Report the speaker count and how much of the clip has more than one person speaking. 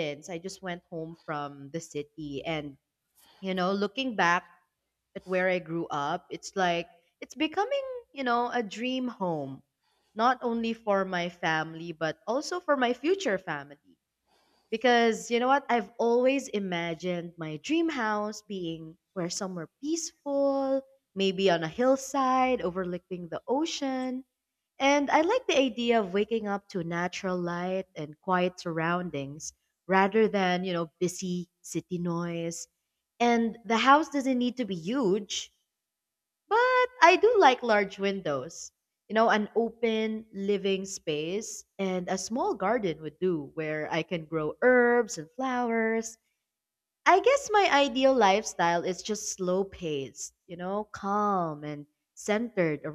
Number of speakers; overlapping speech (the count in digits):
1, no overlap